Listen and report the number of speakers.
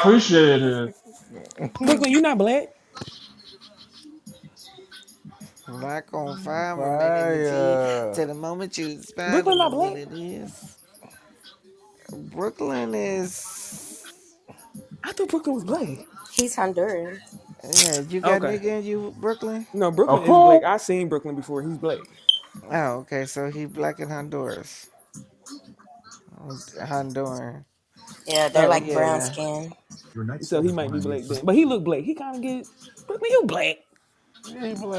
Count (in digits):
5